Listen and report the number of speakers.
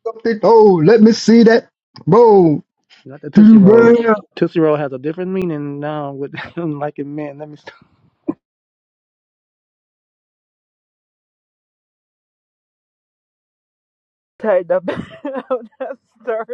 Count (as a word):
three